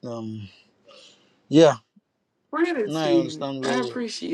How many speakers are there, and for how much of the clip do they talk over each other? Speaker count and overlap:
two, about 25%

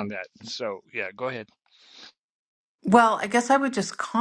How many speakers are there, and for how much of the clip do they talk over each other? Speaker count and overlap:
two, no overlap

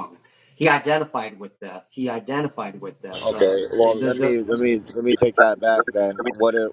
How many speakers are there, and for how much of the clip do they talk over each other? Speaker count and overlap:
two, about 18%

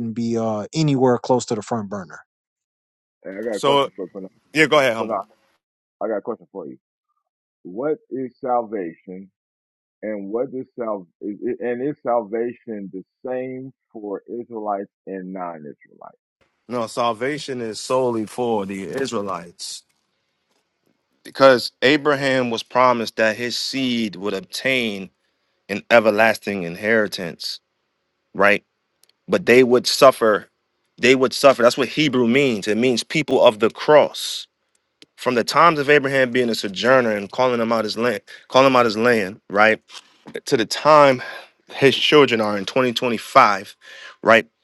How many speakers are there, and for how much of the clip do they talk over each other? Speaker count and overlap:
three, about 1%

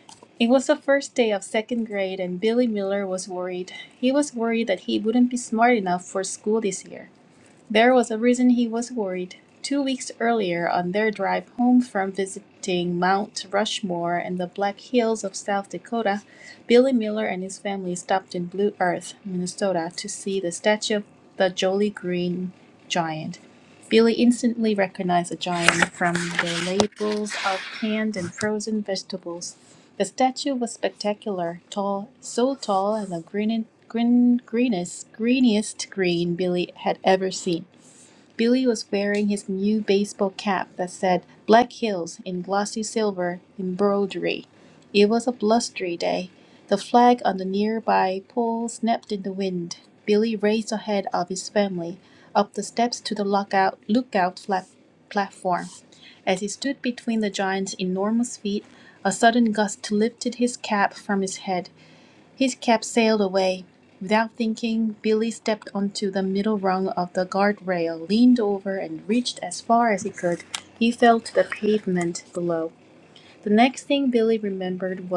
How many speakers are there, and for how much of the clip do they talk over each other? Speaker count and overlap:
one, no overlap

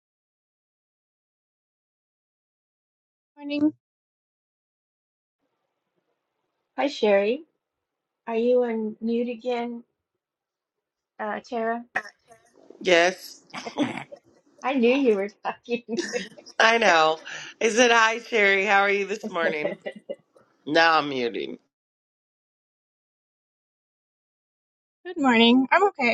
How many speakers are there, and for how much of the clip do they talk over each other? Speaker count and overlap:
three, no overlap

